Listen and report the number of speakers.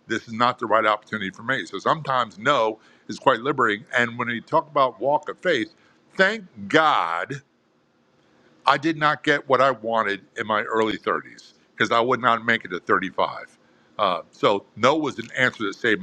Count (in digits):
1